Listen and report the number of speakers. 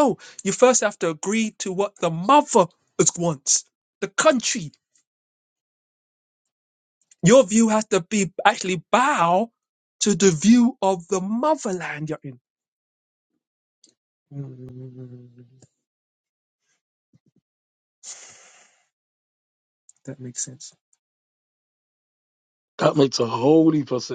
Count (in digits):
2